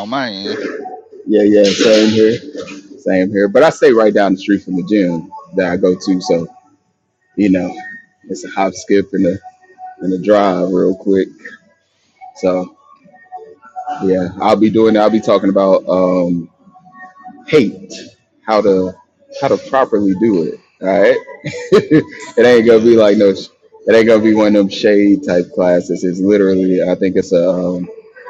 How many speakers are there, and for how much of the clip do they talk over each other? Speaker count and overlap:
2, about 2%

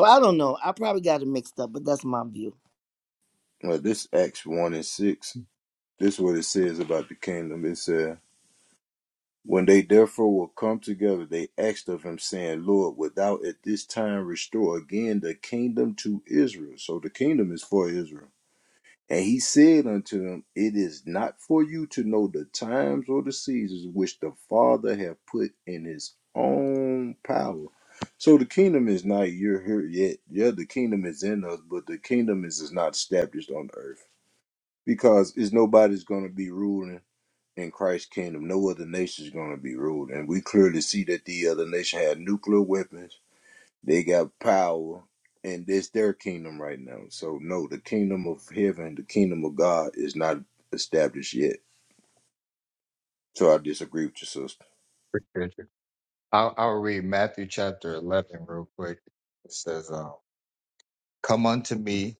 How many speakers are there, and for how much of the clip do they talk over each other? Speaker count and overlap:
3, no overlap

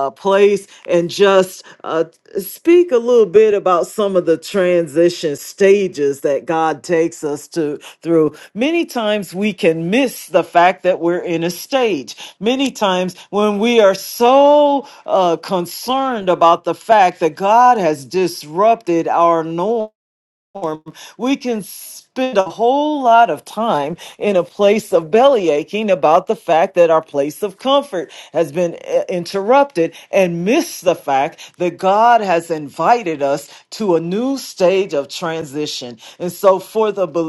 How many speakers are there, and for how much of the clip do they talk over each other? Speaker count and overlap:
1, no overlap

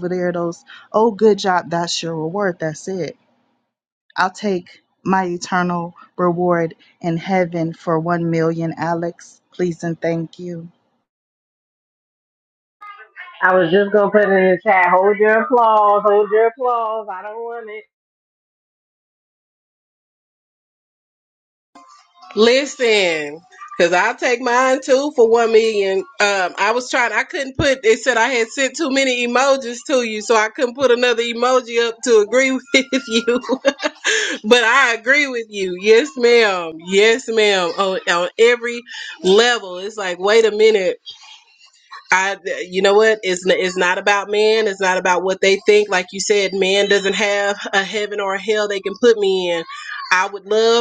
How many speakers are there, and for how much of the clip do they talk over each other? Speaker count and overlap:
3, no overlap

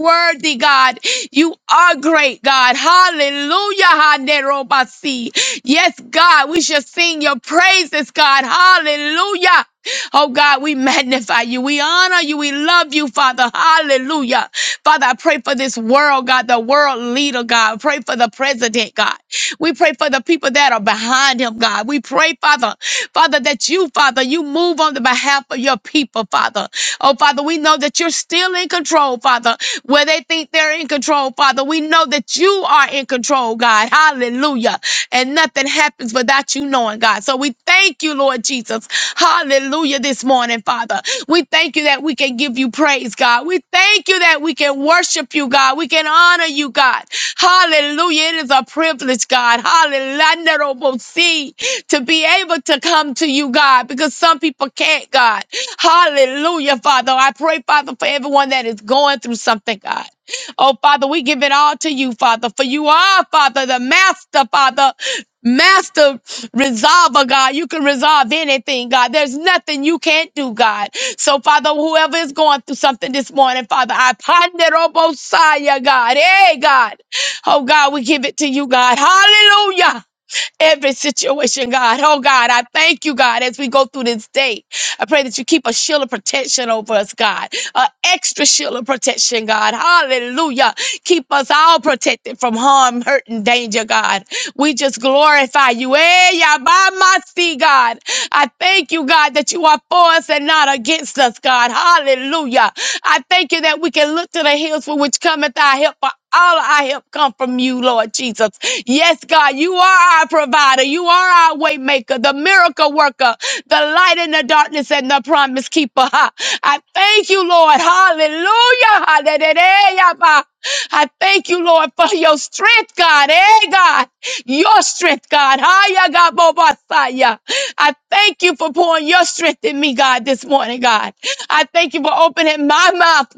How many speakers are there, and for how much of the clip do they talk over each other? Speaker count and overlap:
1, no overlap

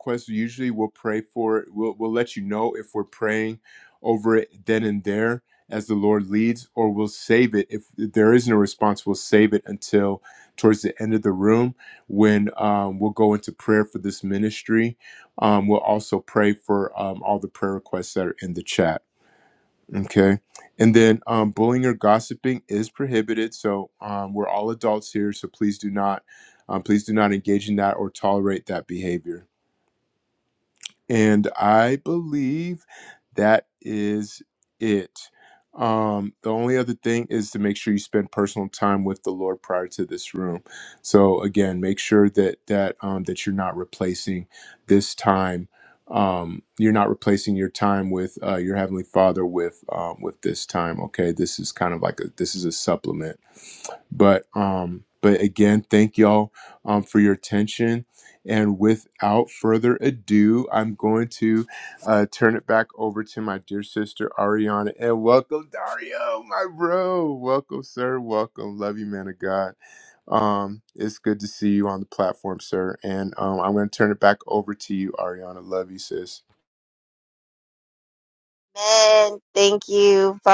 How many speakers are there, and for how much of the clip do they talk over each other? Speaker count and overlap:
2, no overlap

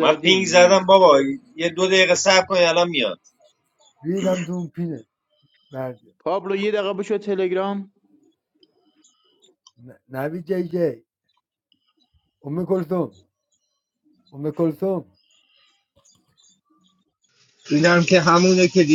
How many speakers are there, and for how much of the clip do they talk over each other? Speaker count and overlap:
4, about 5%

